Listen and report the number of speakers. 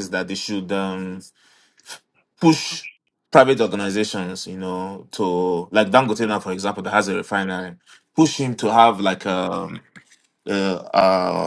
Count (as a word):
one